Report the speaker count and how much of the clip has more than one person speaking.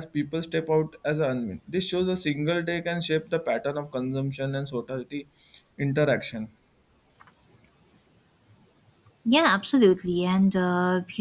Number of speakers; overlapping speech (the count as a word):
two, no overlap